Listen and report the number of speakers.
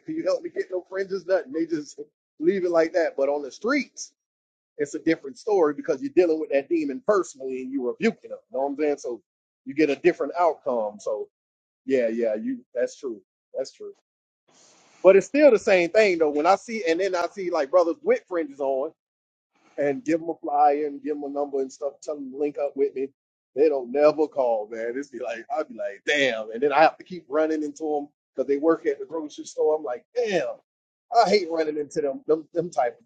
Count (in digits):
1